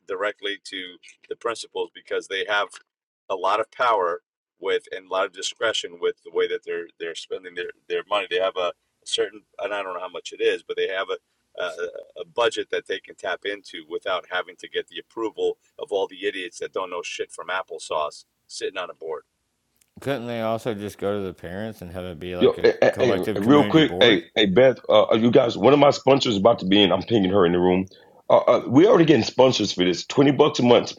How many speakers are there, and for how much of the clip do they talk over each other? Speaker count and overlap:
3, about 6%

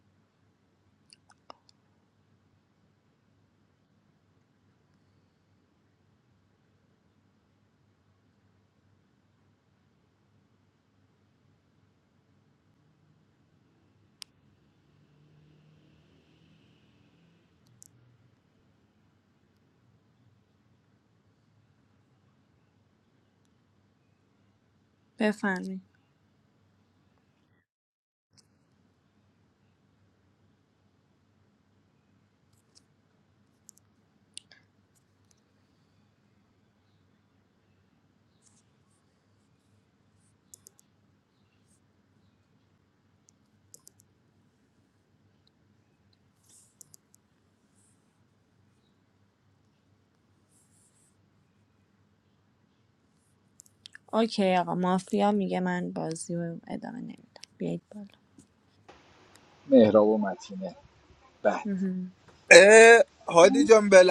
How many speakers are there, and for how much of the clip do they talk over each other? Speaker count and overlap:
3, no overlap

